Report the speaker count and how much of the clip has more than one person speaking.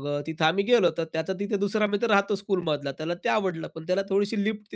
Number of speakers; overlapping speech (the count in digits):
1, no overlap